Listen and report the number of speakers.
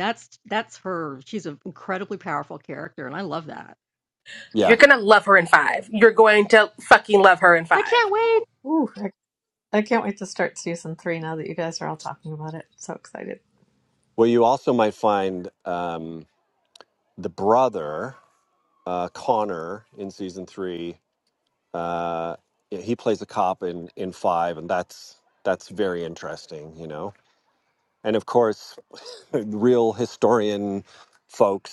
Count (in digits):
4